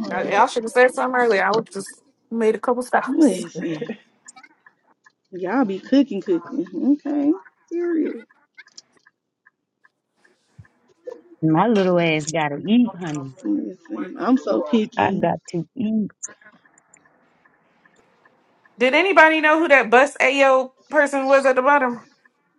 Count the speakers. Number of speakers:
three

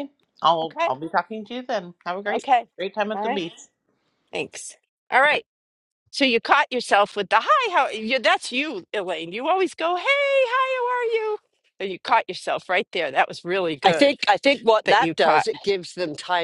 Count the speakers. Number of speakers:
three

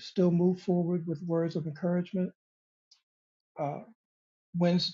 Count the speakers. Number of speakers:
one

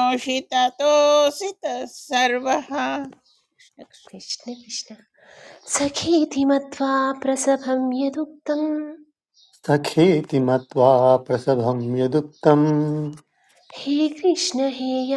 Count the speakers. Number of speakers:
three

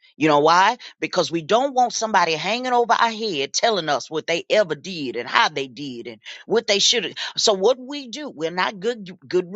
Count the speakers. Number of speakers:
one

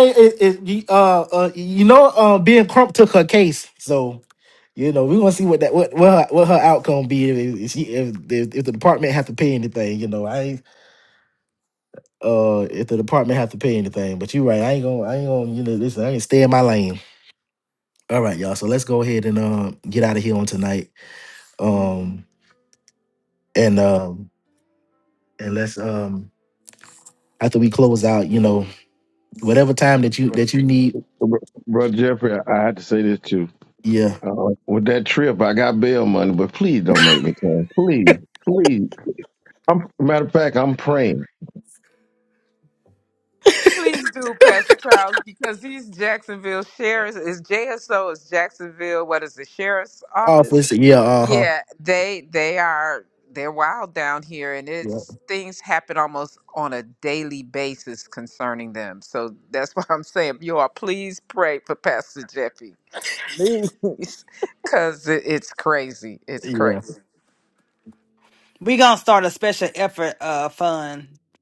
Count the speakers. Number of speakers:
four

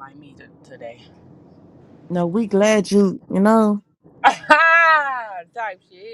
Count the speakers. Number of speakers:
two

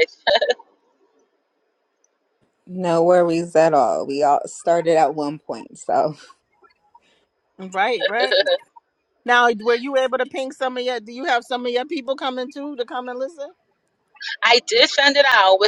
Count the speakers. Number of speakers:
three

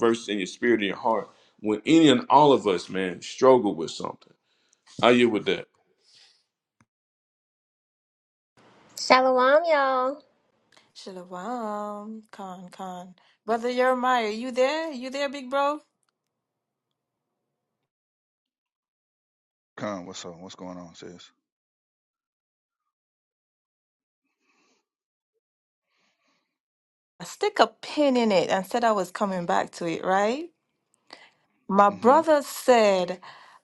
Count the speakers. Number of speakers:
four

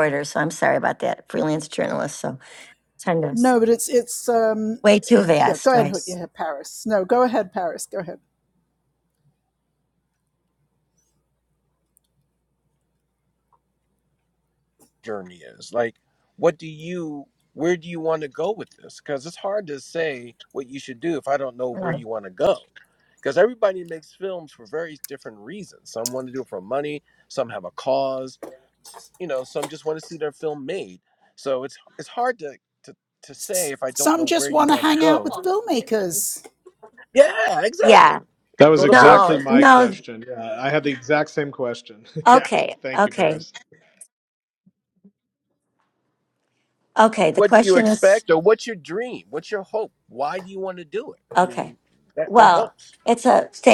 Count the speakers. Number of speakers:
four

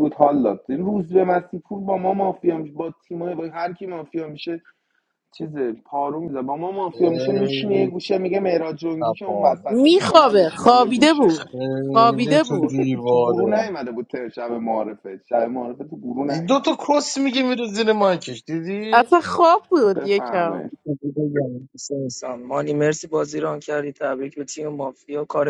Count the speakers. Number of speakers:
four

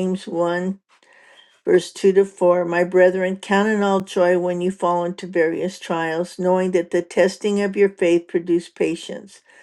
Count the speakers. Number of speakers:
one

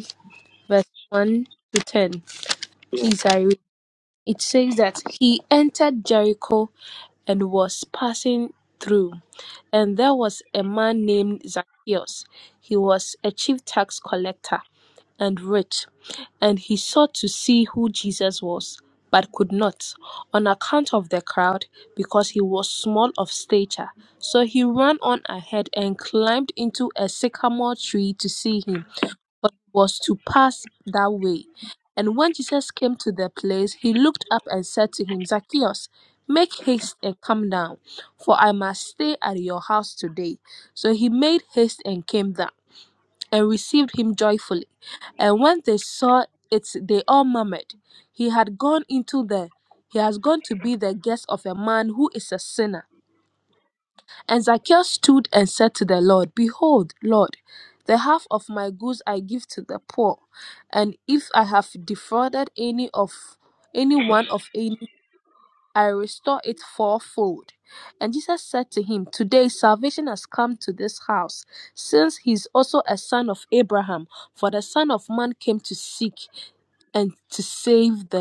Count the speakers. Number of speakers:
one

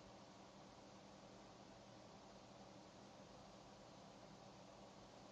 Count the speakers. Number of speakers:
zero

